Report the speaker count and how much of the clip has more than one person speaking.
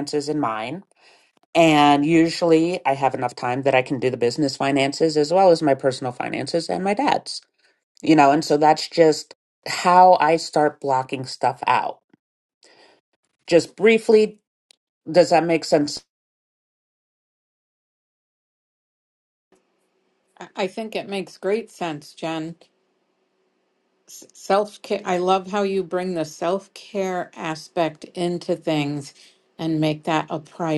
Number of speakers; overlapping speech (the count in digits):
2, no overlap